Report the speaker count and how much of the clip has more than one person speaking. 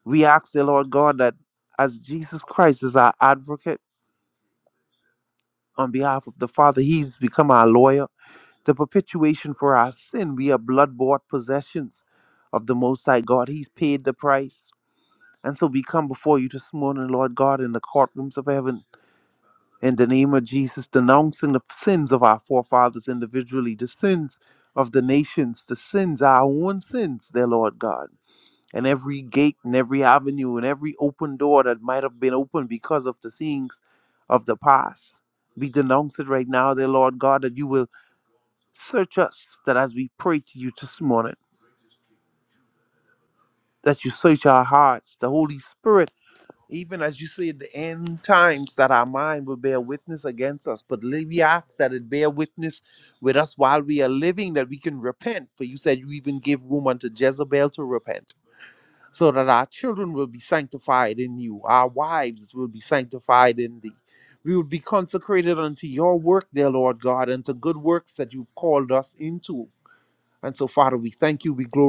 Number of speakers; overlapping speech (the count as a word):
one, no overlap